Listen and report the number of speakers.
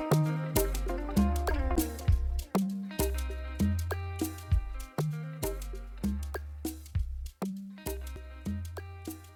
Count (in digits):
0